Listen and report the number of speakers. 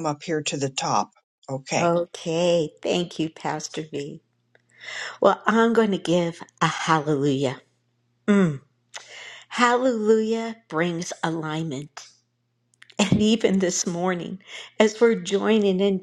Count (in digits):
2